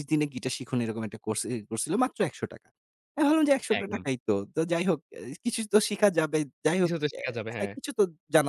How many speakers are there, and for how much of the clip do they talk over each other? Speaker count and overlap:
two, about 8%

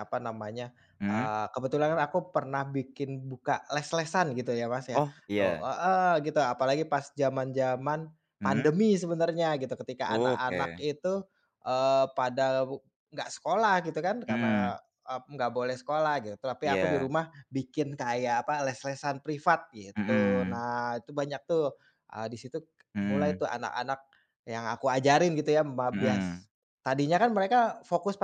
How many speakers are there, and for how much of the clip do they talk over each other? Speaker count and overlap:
two, about 12%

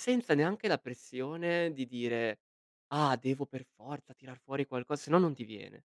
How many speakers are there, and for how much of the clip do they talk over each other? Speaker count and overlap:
one, no overlap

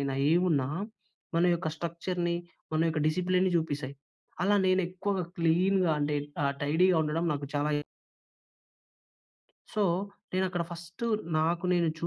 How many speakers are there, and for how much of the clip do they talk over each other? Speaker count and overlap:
one, no overlap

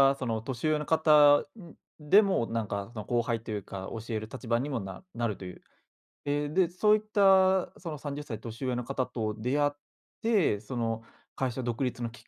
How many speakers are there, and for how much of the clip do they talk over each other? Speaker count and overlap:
one, no overlap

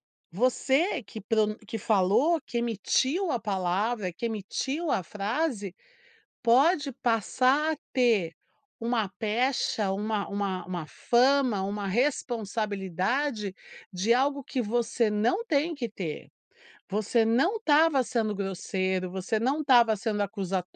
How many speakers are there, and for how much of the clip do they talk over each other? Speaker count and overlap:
one, no overlap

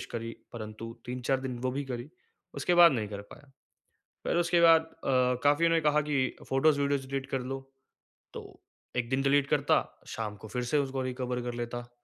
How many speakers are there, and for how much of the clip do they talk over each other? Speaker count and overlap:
one, no overlap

